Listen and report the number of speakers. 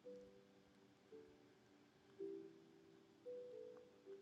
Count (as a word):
zero